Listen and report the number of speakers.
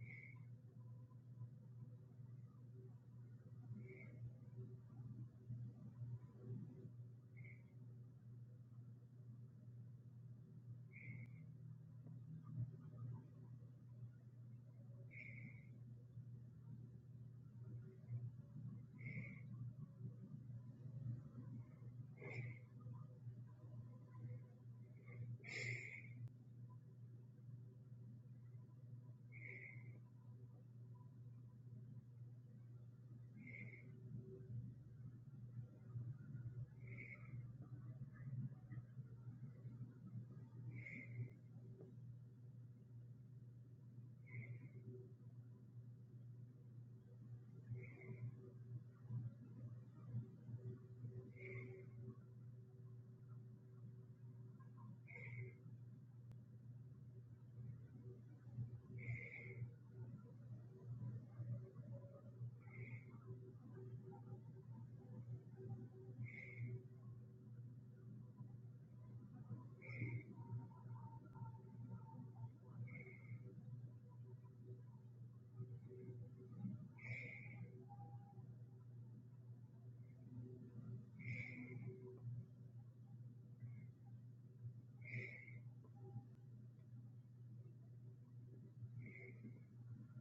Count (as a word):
zero